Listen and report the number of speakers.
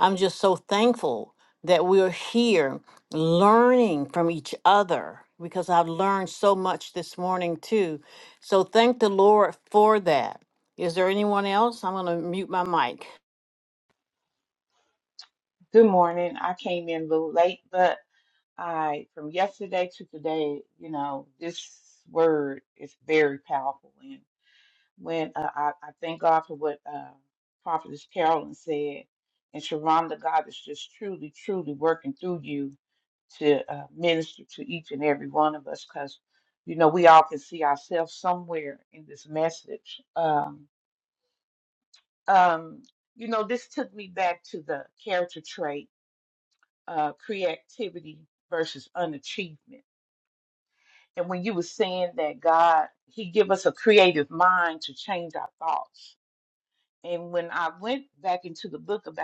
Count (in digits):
2